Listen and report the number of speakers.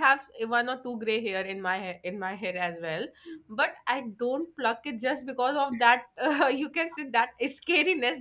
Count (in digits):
1